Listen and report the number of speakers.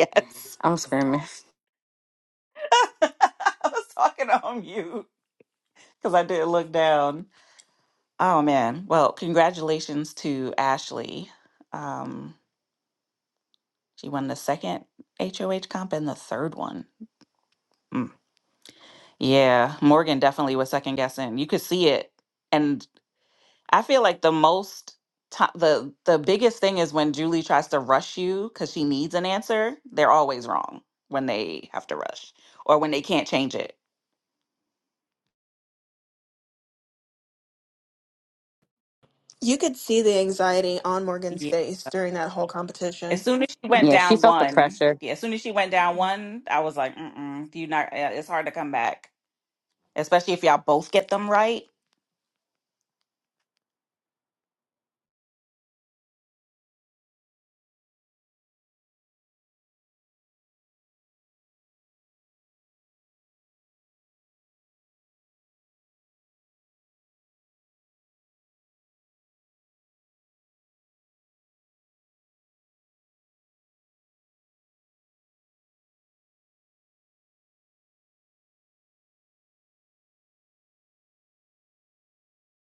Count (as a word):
three